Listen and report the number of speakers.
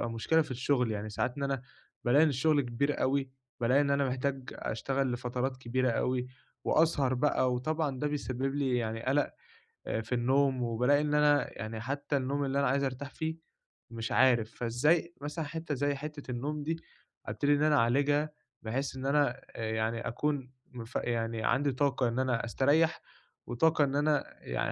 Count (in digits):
1